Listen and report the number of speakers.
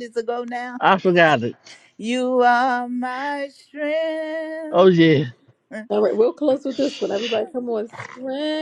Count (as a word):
three